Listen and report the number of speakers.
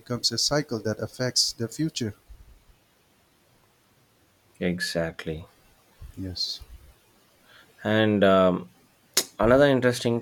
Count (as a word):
two